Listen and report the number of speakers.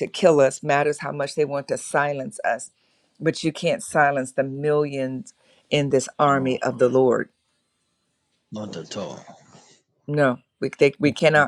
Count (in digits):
2